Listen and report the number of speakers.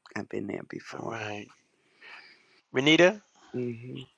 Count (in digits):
2